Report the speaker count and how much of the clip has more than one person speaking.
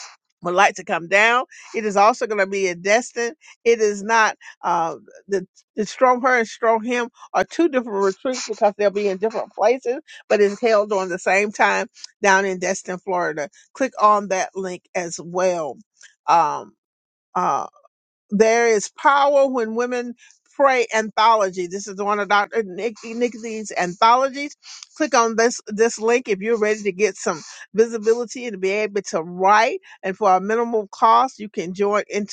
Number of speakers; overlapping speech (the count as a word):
one, no overlap